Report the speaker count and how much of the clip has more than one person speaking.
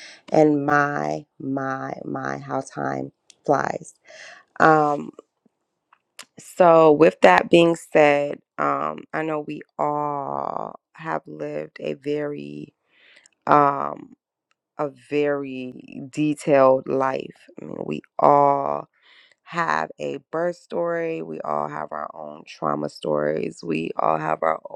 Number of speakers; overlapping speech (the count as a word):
one, no overlap